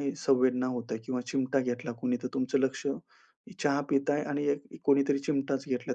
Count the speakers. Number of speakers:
1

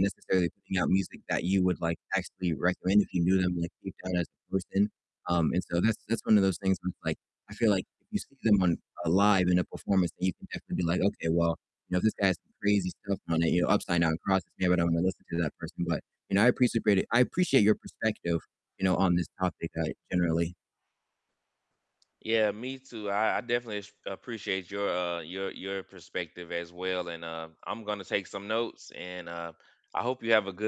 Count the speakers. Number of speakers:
2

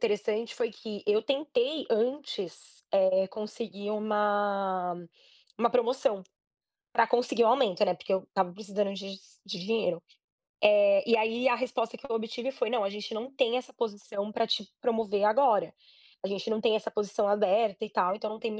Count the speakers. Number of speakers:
1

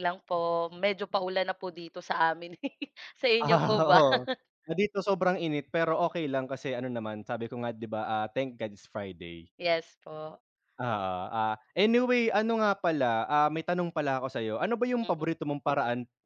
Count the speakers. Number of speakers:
2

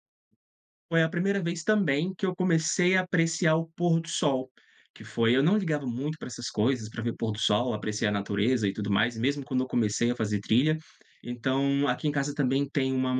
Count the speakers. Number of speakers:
1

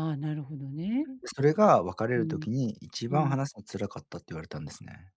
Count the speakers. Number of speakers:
2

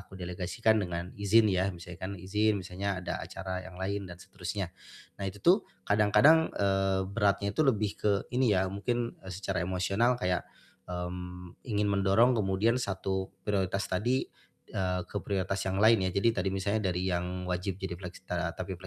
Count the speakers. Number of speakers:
1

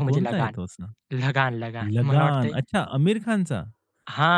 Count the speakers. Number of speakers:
2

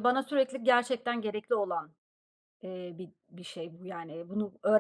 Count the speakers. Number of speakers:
1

